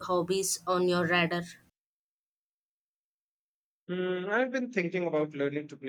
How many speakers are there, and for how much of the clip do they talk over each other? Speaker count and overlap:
two, no overlap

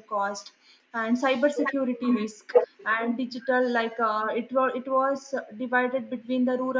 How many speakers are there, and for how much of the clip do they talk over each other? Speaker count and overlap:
one, no overlap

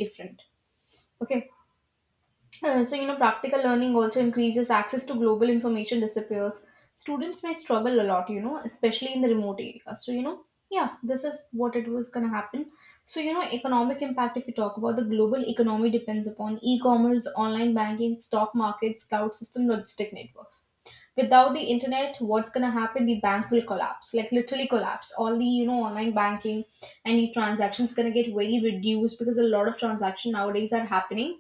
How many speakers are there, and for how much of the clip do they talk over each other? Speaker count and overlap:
one, no overlap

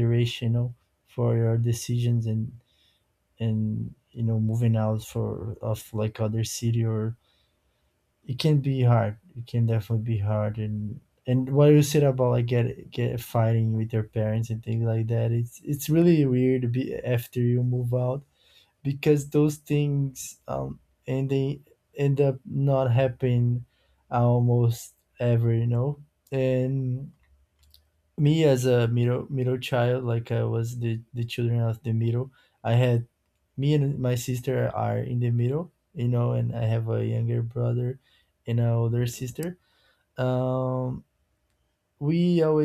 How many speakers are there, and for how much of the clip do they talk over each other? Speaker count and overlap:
one, no overlap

